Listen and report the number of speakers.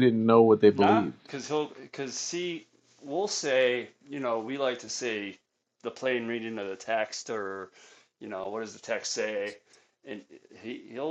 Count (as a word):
two